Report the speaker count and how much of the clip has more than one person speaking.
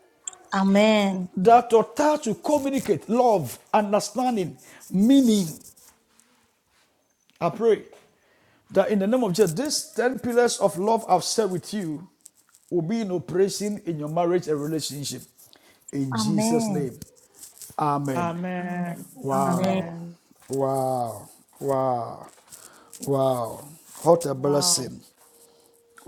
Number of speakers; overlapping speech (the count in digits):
3, about 7%